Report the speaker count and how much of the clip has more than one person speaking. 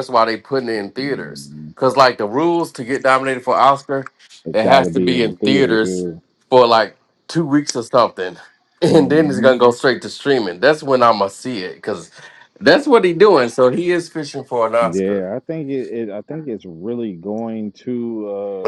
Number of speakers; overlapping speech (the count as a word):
two, about 15%